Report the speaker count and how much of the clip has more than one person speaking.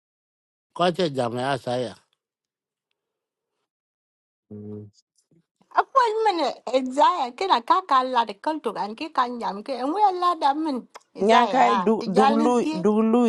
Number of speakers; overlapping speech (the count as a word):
three, about 12%